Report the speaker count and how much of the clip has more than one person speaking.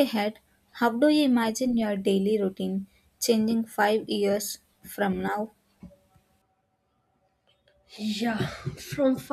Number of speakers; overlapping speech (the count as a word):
two, no overlap